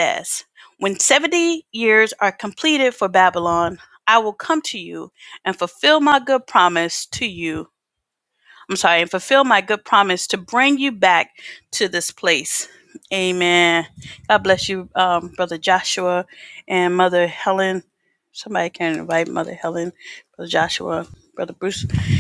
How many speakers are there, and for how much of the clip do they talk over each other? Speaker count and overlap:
one, no overlap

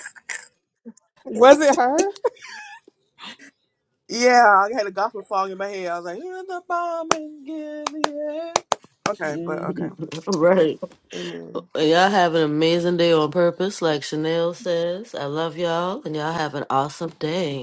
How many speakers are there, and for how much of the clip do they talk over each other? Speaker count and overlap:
three, about 4%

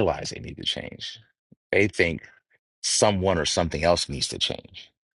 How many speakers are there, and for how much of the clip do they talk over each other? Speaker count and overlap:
one, no overlap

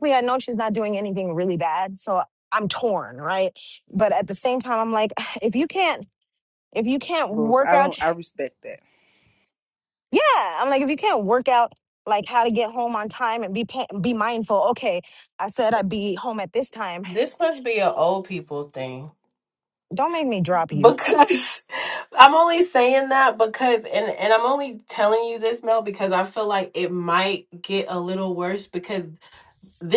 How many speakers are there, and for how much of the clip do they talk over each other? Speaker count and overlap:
three, about 3%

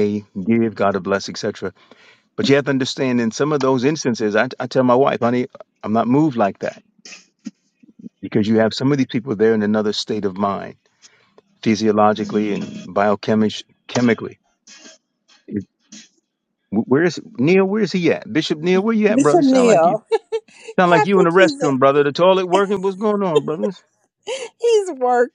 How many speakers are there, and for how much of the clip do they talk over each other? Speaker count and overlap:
two, about 6%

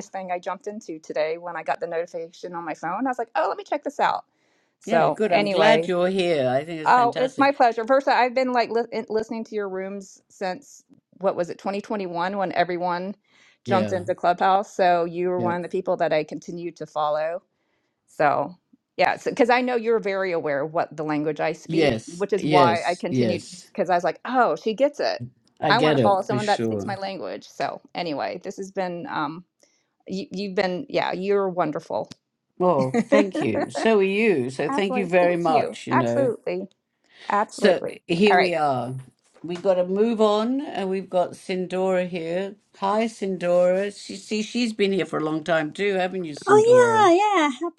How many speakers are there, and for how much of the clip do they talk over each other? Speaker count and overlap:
three, about 16%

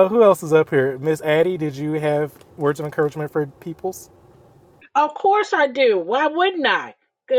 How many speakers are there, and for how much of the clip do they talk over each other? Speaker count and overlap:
two, no overlap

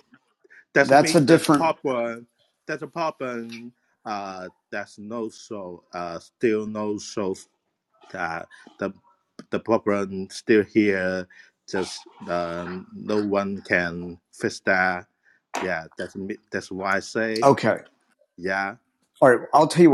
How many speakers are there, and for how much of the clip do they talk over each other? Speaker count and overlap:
two, about 5%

